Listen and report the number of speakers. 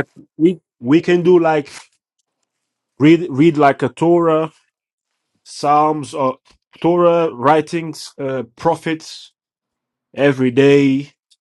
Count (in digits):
1